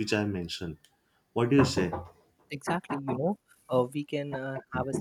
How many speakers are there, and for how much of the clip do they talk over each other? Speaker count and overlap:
2, no overlap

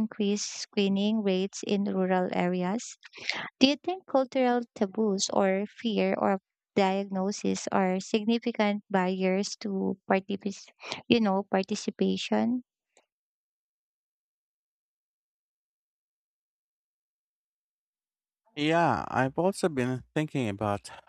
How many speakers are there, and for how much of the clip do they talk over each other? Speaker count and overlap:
2, no overlap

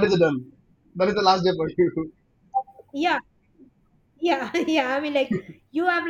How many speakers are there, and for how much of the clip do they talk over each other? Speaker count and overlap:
2, no overlap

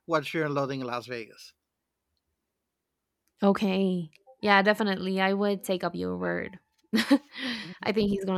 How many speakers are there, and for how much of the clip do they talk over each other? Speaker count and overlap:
2, about 3%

